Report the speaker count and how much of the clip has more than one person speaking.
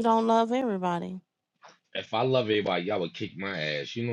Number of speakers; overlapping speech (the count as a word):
two, no overlap